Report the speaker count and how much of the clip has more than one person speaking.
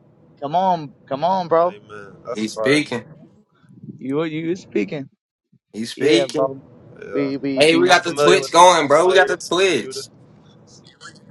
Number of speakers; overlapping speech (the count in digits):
3, about 31%